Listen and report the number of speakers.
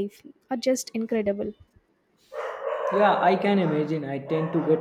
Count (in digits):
2